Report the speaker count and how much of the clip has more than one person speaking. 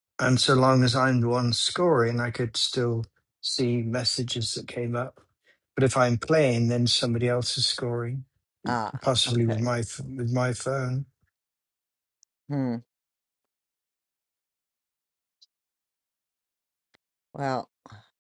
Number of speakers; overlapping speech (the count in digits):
2, about 4%